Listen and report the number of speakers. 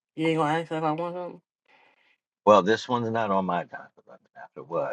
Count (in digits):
2